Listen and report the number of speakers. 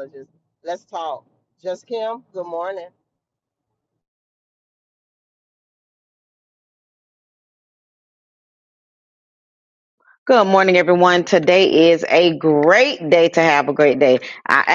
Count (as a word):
two